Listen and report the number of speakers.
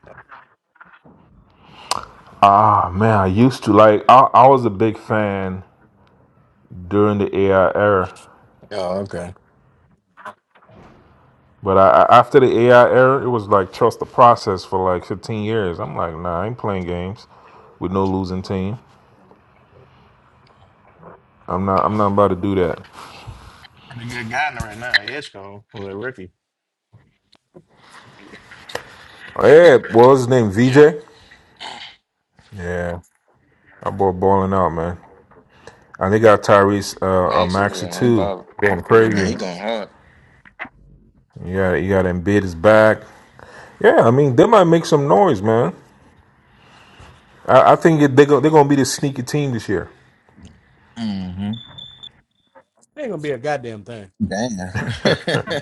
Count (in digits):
3